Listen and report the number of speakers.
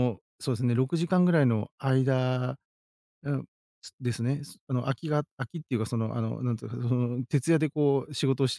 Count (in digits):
1